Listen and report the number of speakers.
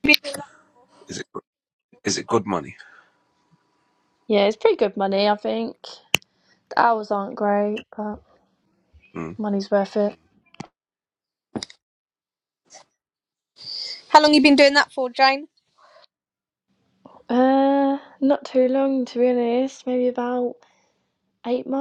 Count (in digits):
3